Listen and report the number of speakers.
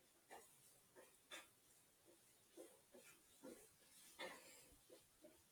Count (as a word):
zero